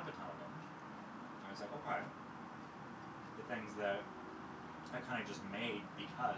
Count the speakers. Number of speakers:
1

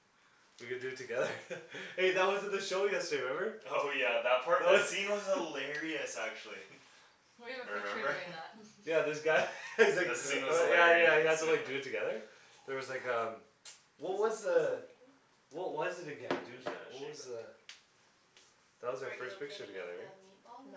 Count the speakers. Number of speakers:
4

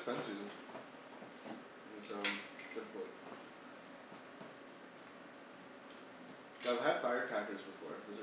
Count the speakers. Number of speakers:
1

